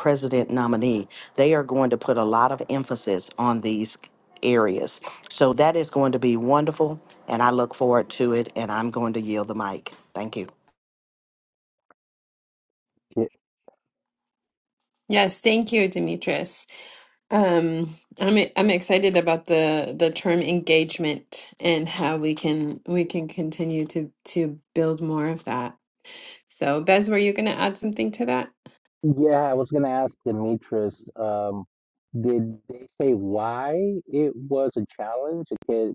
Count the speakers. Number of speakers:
three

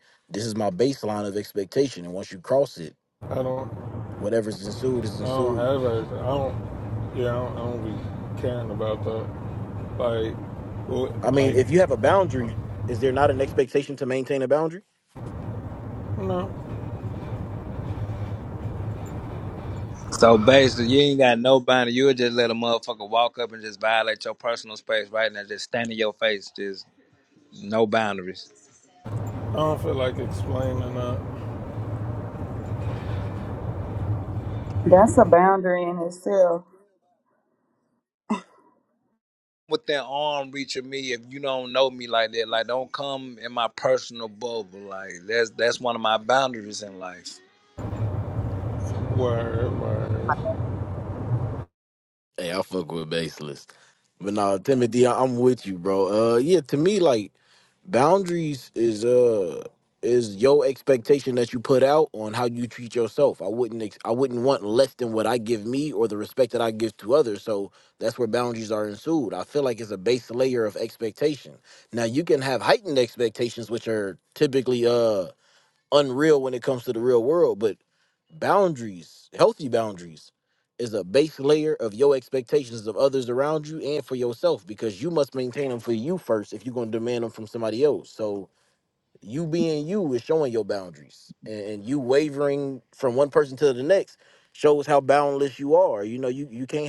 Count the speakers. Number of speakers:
four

